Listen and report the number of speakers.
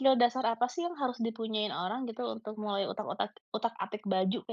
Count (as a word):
one